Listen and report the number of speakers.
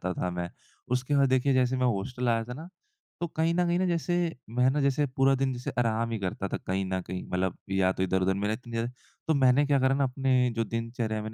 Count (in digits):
1